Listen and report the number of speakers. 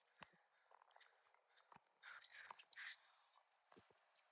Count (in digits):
0